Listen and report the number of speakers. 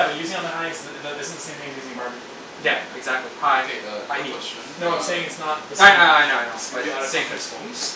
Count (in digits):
3